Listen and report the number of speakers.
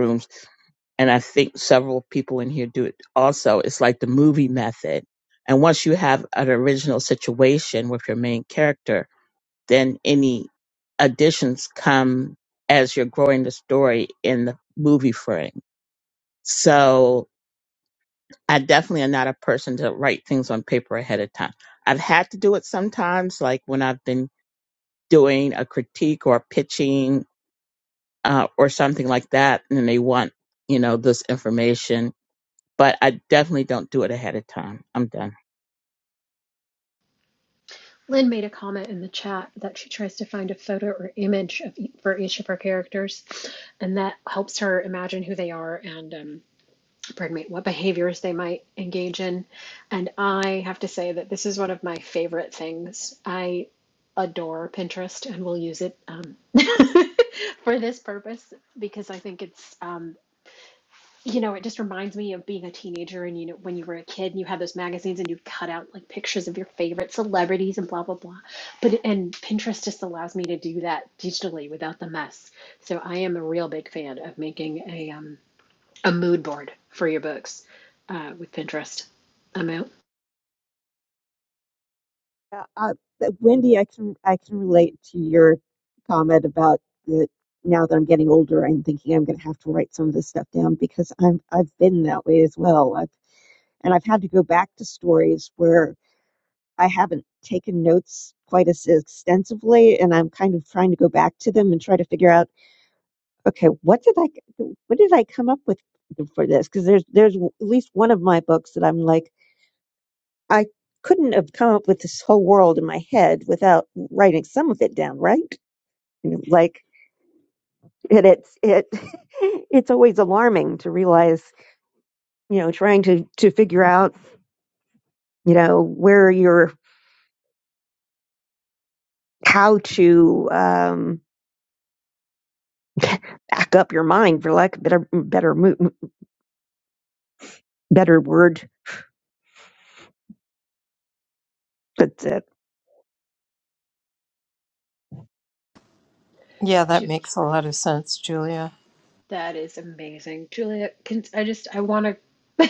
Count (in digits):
4